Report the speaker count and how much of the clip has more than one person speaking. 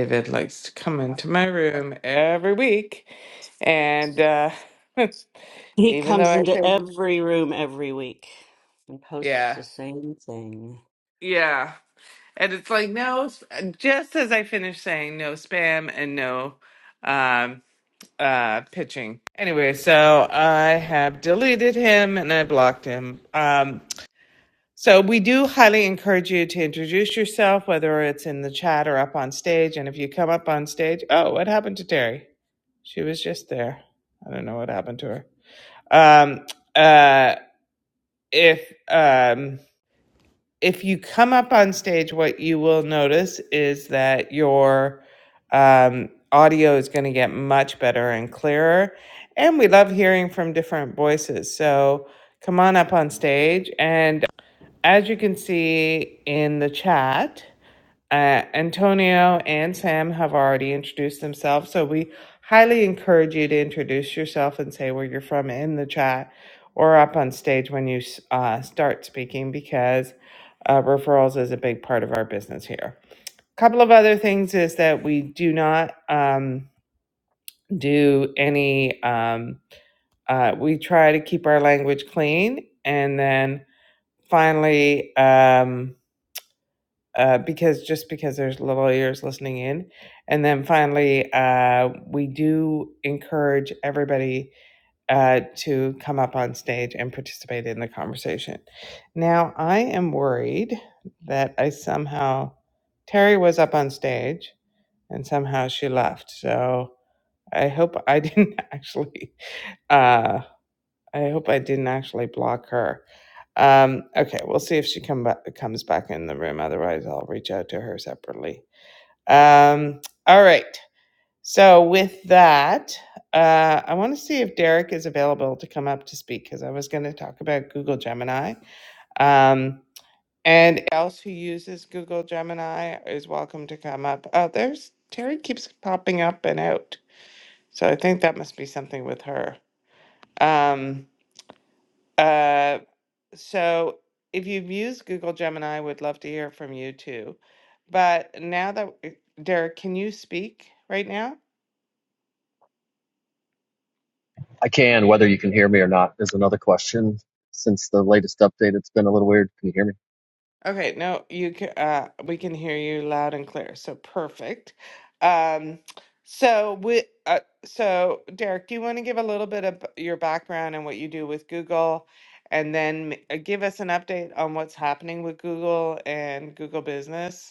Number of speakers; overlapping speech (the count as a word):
three, about 1%